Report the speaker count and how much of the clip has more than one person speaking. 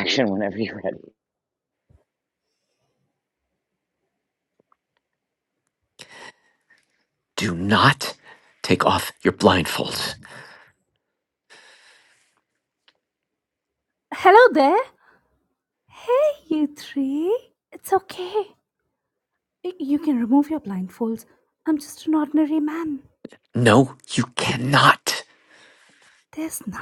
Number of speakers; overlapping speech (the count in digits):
3, no overlap